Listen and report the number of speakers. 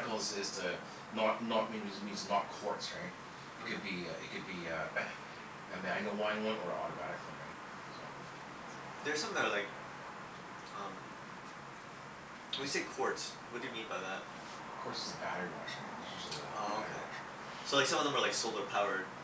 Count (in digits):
2